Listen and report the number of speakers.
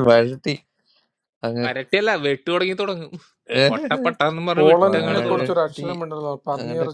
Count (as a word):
three